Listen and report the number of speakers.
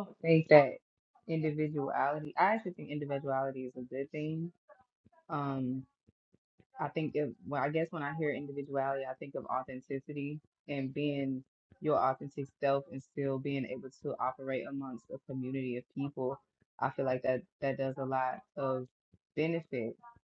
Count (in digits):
1